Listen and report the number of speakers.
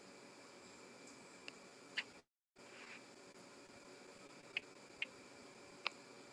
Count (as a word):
zero